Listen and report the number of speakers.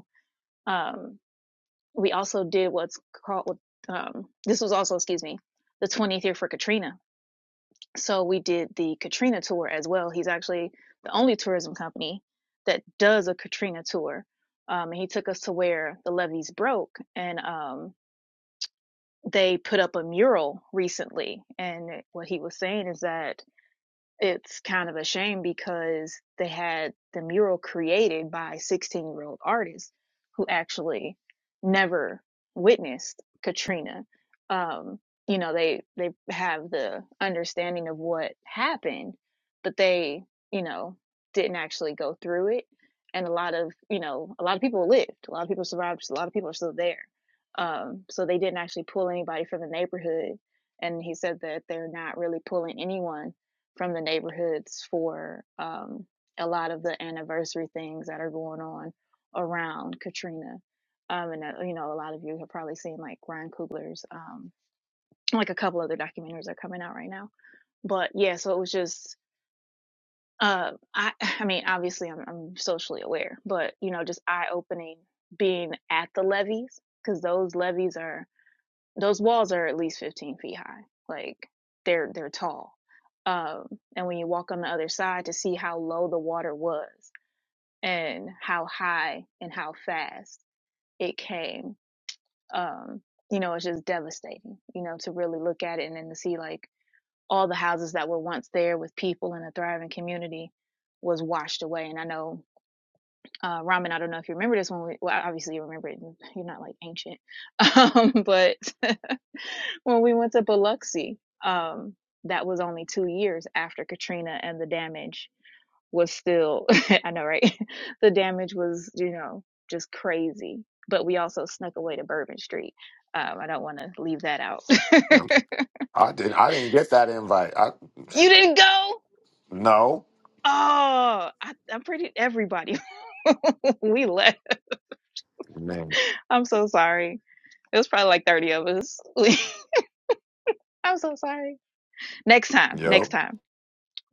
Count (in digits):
2